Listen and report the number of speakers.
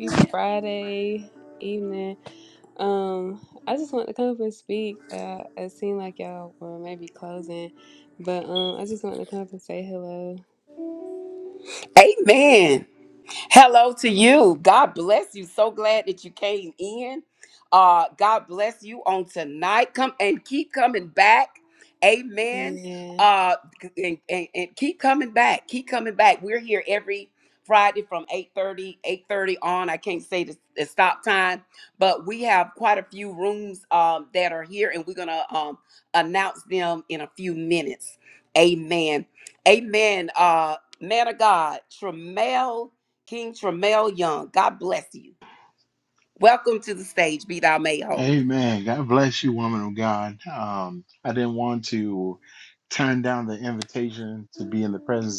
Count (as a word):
three